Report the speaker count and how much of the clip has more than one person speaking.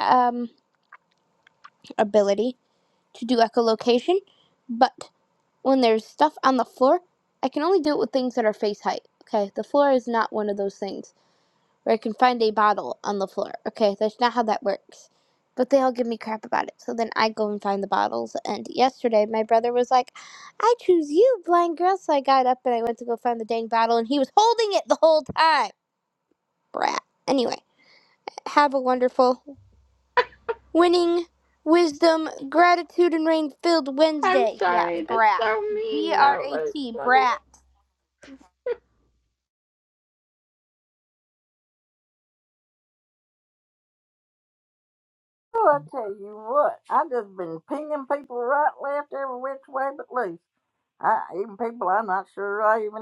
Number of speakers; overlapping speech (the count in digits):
3, about 5%